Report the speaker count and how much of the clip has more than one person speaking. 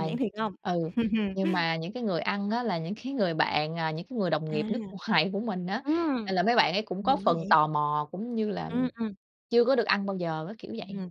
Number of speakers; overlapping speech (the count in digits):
2, about 8%